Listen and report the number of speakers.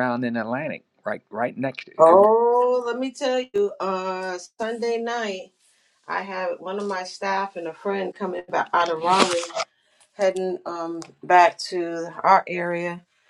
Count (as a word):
two